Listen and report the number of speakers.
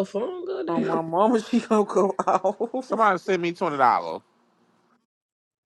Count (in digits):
3